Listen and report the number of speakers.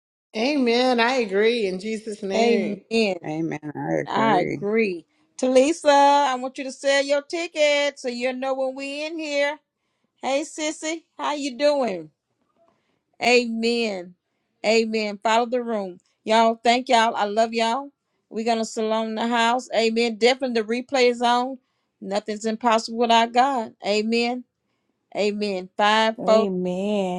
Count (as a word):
four